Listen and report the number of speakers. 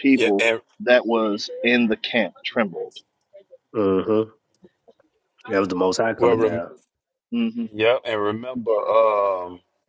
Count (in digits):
3